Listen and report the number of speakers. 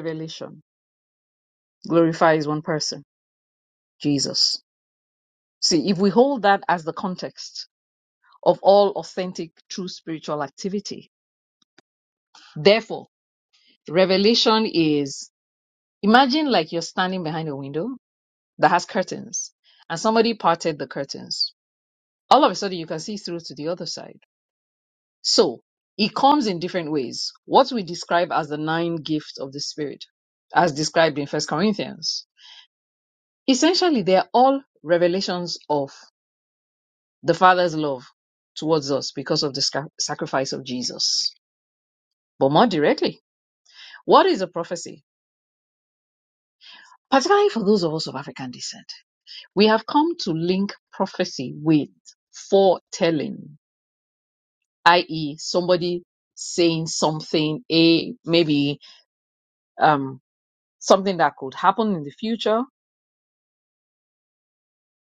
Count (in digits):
1